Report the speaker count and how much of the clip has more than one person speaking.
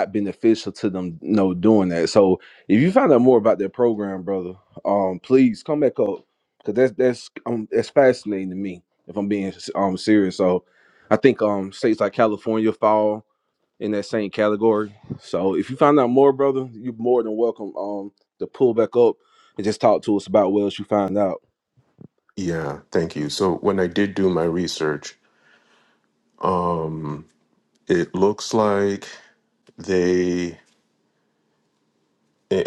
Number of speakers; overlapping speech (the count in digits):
2, no overlap